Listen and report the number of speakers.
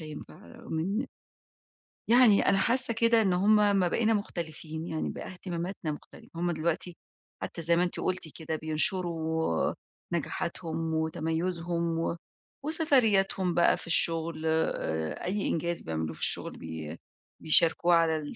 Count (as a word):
one